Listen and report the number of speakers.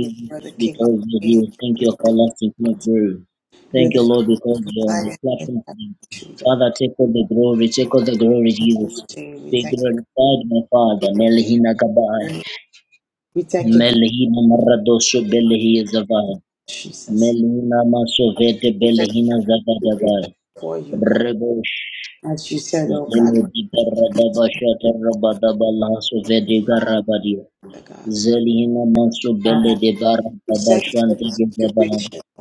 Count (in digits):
2